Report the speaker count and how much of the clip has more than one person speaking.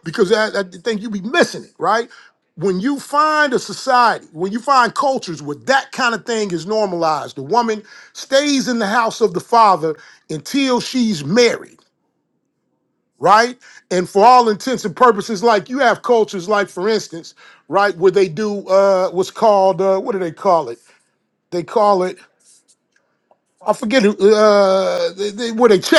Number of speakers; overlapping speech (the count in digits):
1, no overlap